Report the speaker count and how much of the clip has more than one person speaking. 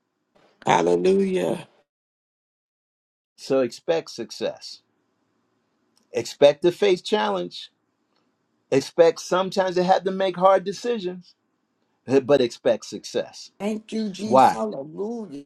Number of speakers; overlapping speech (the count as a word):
three, about 2%